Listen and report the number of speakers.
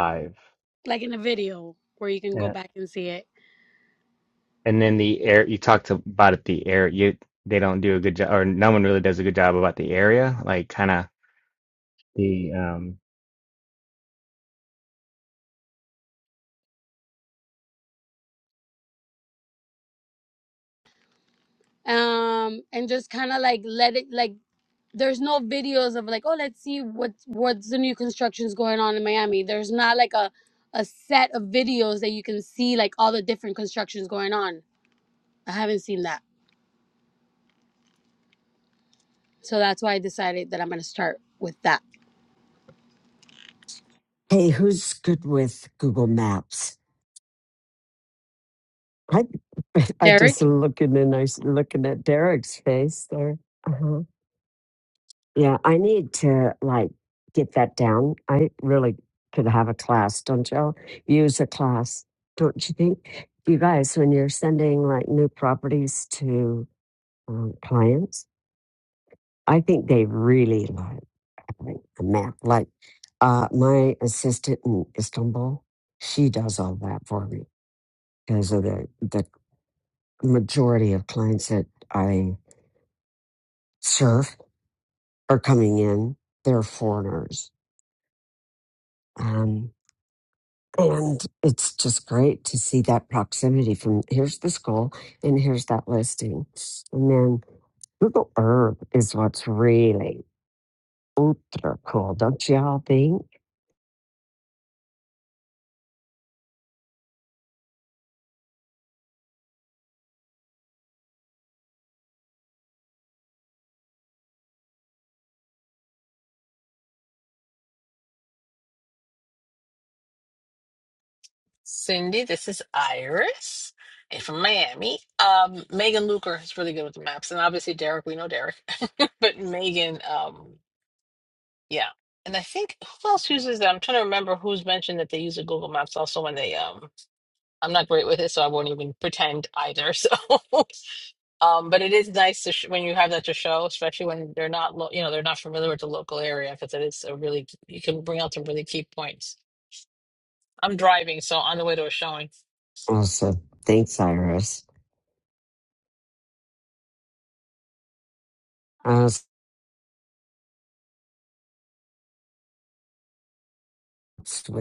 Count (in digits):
4